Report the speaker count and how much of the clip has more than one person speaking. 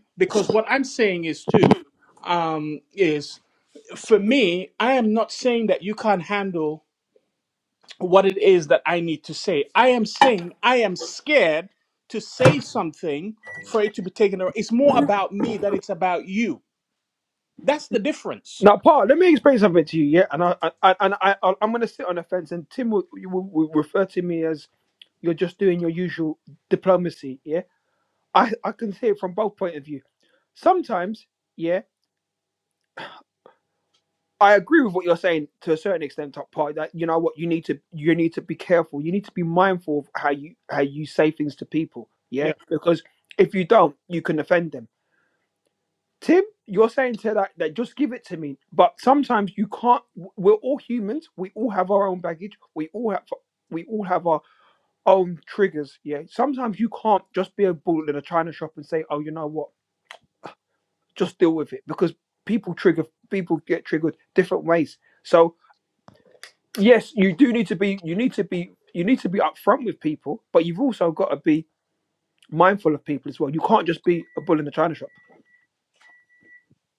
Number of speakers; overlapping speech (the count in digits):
2, under 1%